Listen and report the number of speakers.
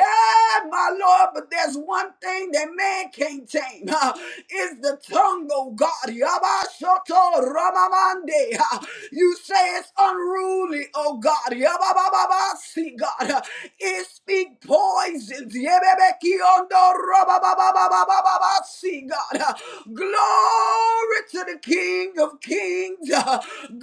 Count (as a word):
one